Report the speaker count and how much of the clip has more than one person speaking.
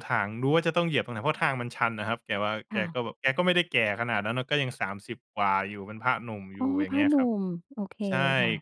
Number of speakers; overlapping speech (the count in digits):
2, about 10%